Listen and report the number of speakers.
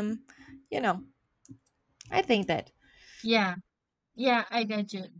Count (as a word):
two